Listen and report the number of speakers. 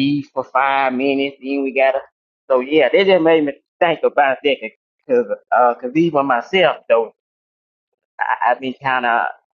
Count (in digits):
1